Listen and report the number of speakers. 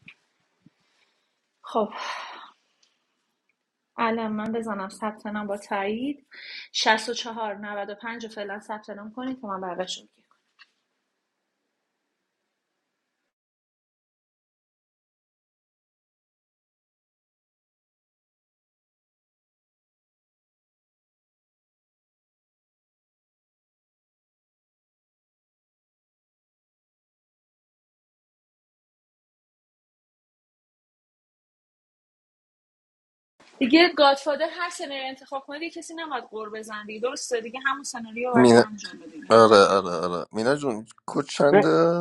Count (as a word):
two